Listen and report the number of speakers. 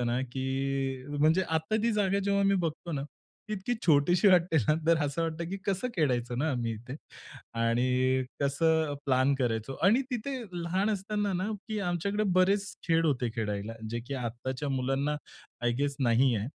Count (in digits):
1